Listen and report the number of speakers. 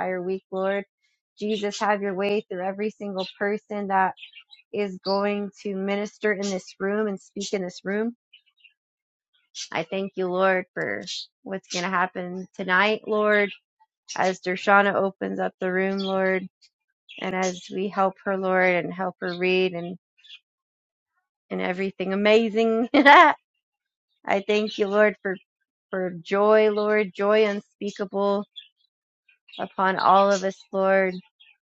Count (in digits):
1